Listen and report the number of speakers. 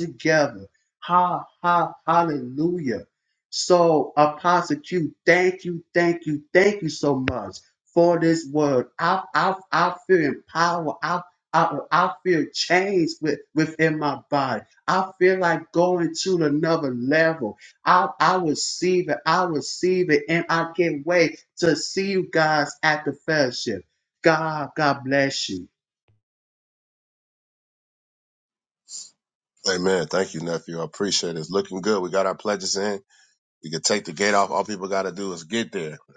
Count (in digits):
2